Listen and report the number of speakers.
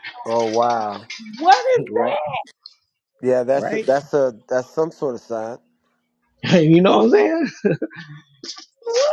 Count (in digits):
3